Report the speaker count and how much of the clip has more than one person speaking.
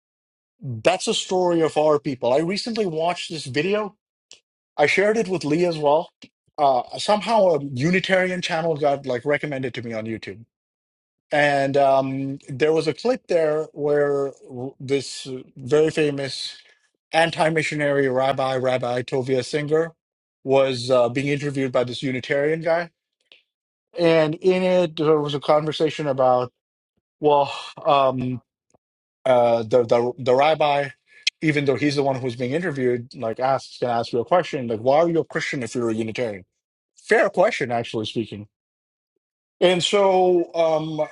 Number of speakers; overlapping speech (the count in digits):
1, no overlap